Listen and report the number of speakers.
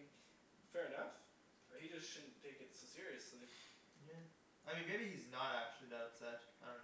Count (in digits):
2